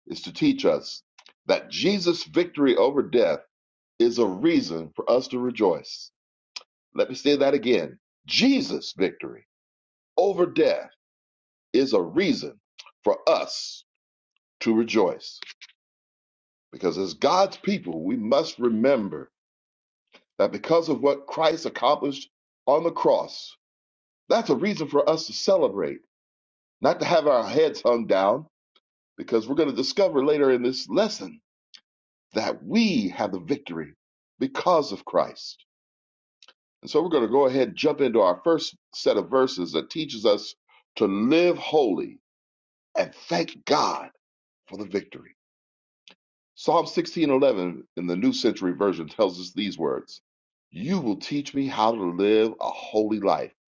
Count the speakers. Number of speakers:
one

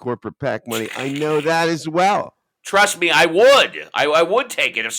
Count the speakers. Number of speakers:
two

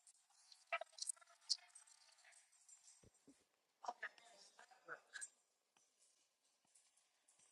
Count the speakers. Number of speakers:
zero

